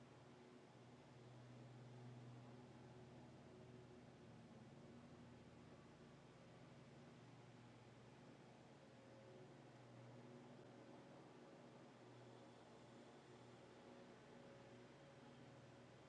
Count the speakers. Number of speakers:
0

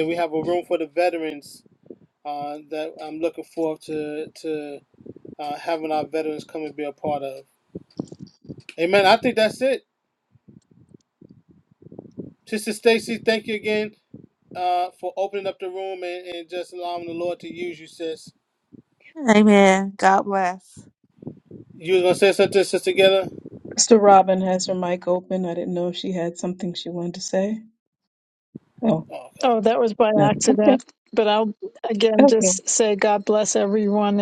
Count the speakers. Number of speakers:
4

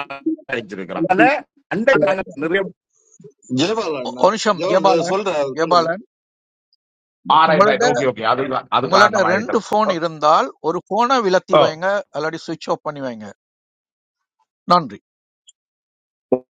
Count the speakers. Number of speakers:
3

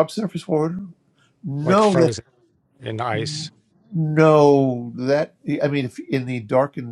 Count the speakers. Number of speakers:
2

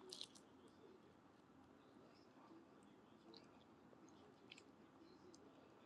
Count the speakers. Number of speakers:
0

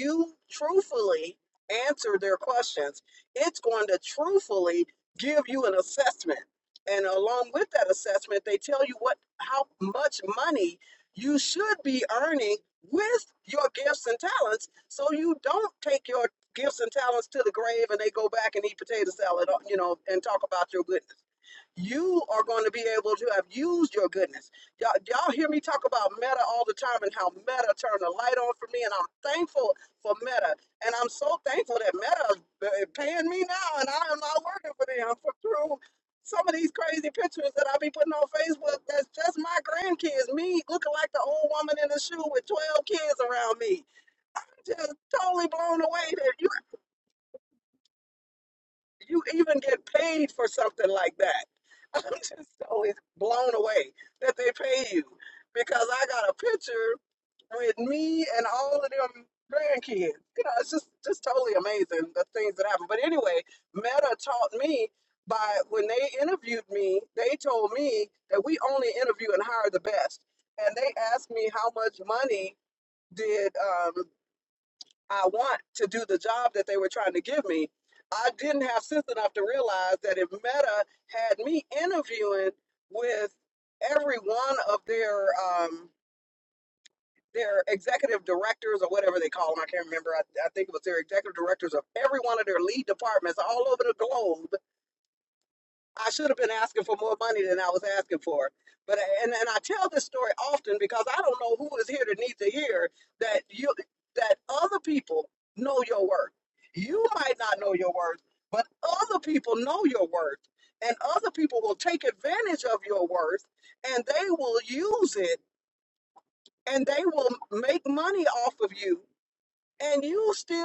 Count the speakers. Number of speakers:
1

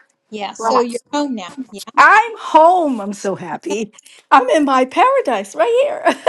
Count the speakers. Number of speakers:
2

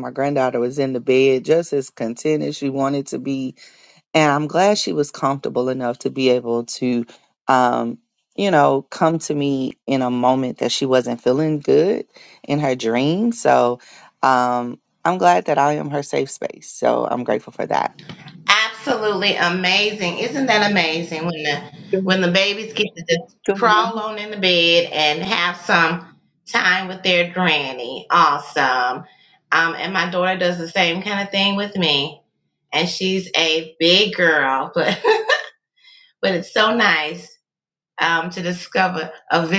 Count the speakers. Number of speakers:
2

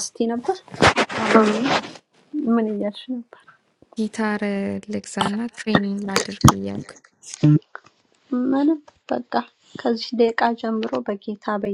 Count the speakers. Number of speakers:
2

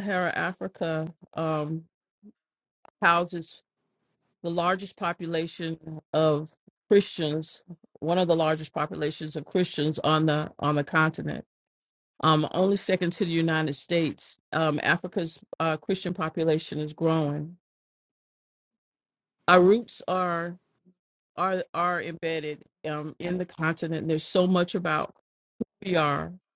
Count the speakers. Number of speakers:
1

